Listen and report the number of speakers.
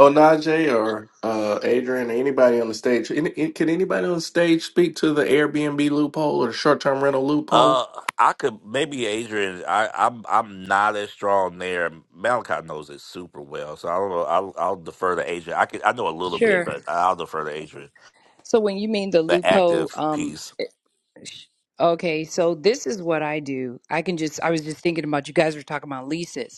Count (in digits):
3